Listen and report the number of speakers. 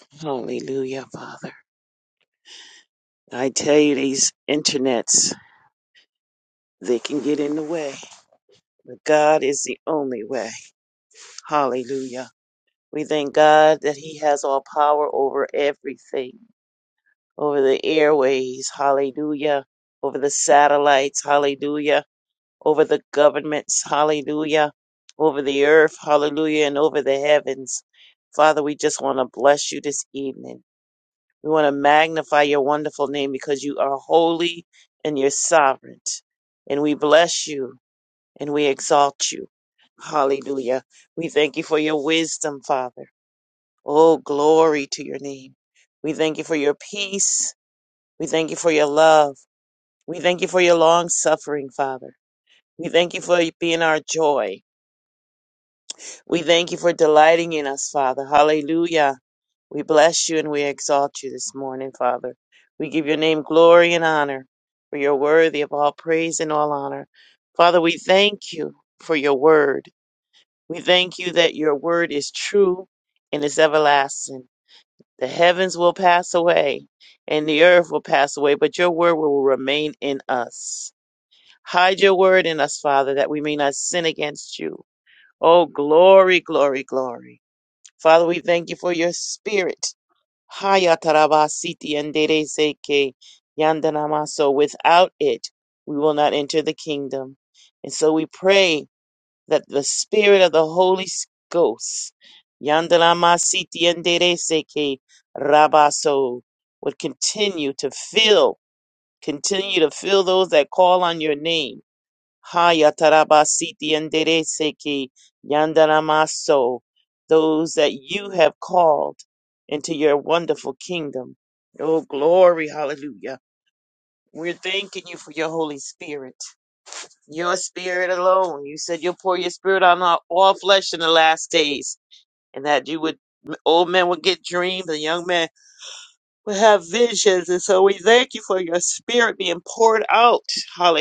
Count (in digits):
1